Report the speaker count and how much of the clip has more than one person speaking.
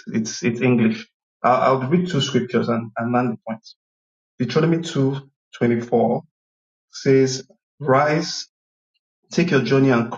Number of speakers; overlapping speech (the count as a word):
one, no overlap